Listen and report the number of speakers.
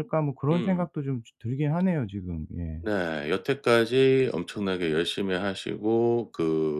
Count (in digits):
2